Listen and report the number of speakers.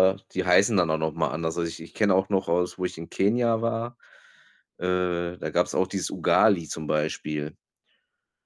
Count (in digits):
1